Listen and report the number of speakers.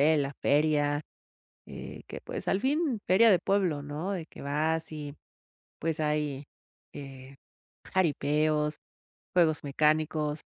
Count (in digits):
1